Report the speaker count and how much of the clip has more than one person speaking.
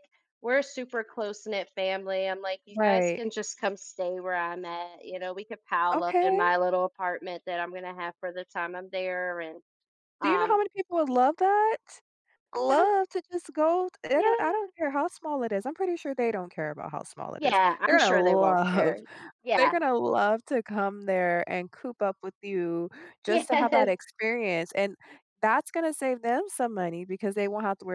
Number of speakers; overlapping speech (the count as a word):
two, about 15%